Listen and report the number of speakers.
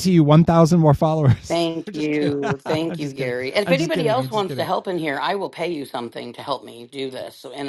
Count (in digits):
2